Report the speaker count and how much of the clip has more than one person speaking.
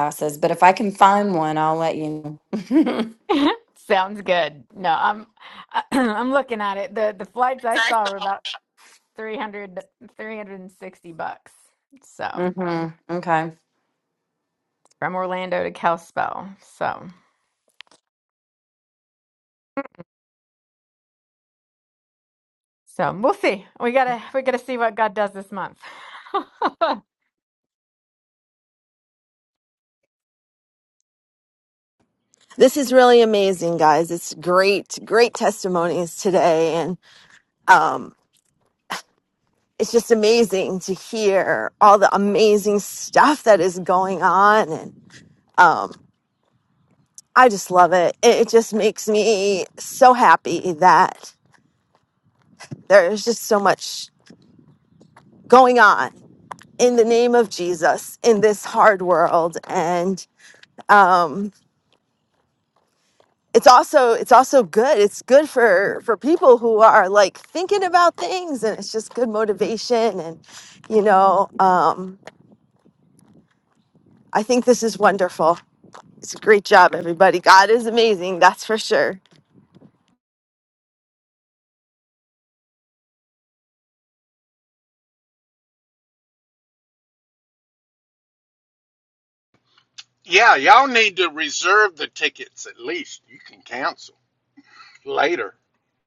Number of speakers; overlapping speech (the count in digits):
4, under 1%